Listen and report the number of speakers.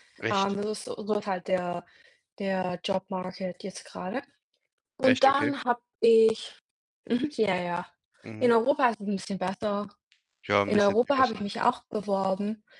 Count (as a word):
two